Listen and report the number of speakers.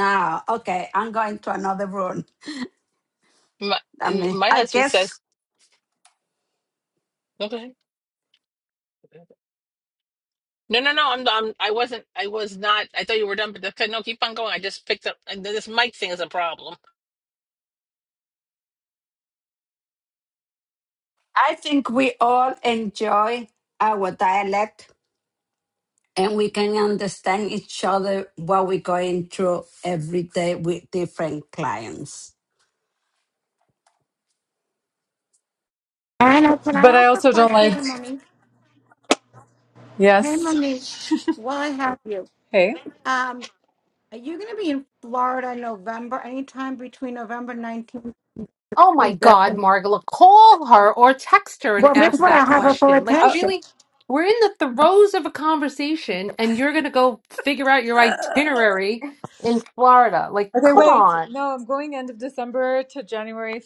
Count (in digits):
5